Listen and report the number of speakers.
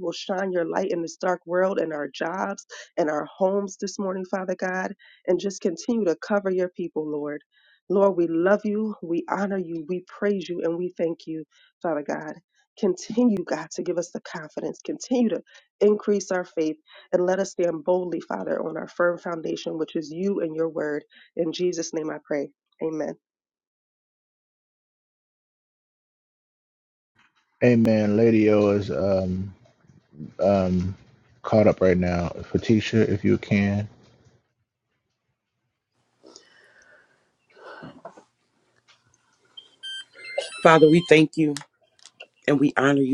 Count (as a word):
three